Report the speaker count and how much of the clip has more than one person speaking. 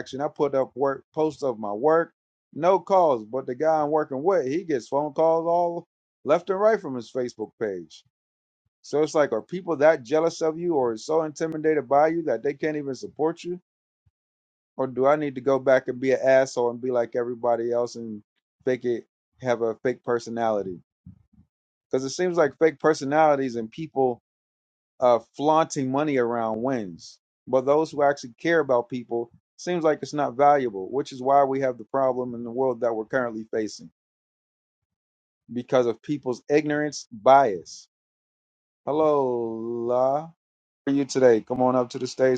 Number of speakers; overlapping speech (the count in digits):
1, no overlap